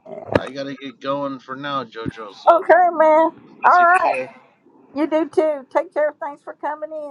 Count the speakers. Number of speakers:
two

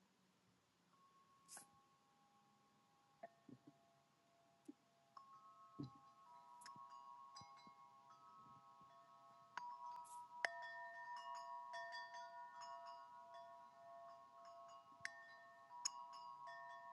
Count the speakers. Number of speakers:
zero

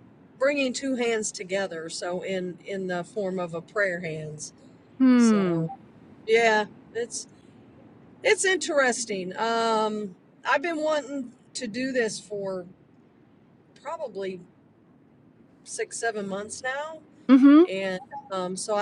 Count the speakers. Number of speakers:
two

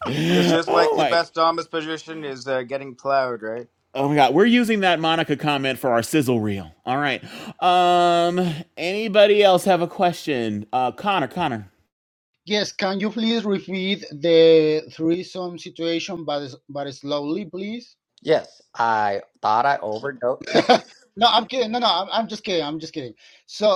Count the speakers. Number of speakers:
four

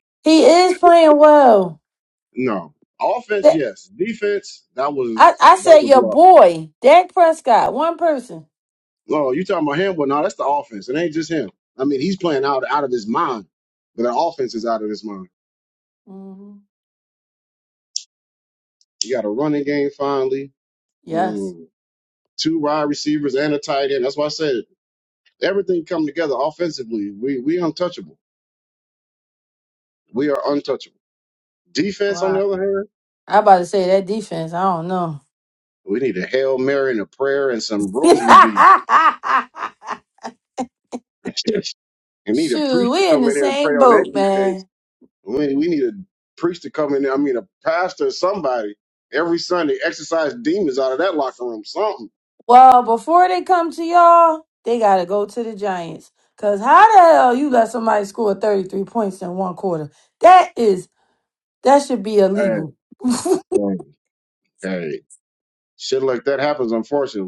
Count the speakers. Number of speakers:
two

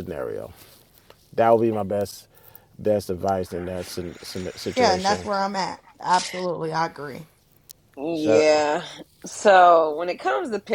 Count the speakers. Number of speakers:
three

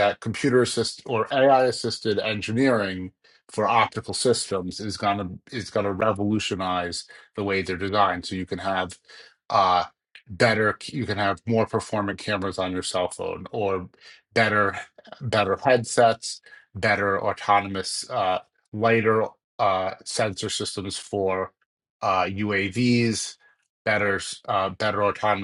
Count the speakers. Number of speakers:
one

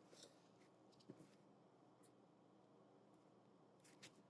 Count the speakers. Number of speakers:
zero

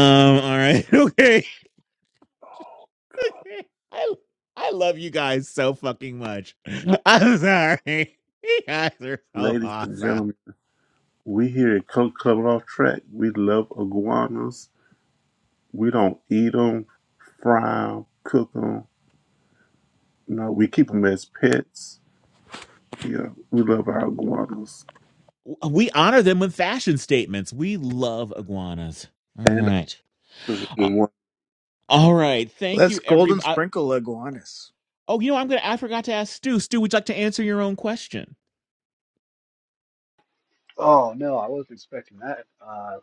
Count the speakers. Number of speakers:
four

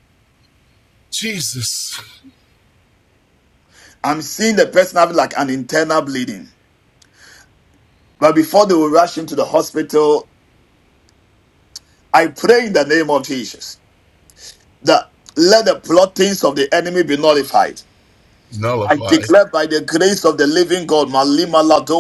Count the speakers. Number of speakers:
two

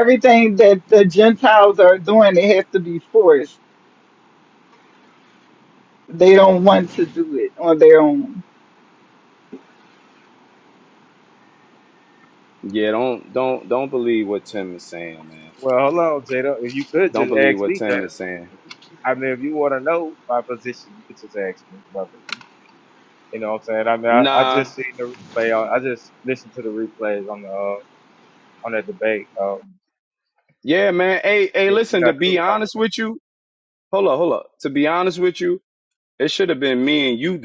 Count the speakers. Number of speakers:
three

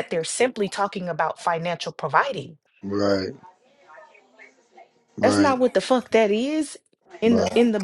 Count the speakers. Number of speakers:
two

